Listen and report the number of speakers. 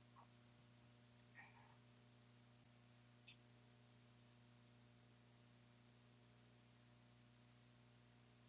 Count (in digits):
0